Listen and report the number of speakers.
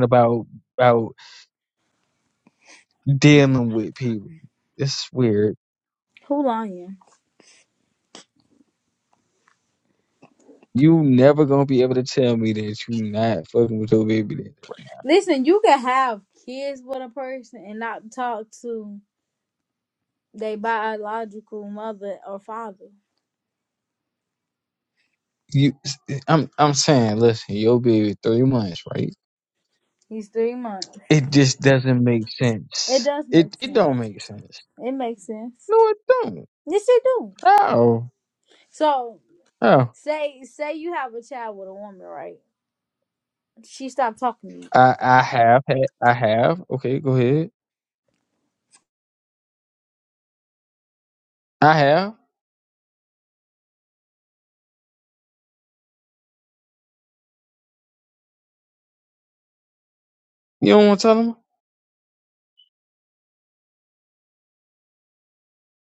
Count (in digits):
2